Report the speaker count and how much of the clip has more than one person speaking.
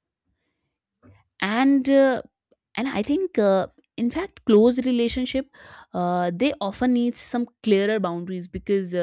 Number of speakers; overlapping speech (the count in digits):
1, no overlap